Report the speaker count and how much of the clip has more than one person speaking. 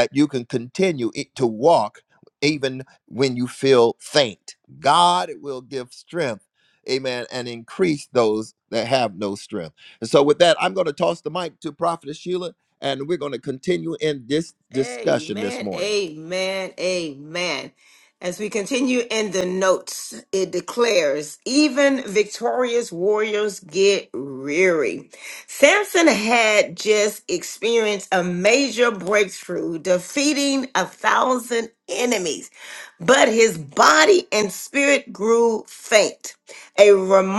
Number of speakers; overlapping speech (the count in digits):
2, about 3%